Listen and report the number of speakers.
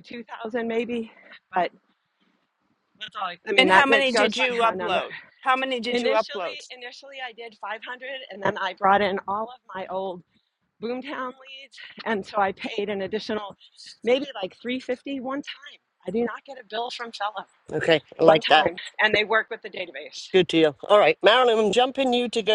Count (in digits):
3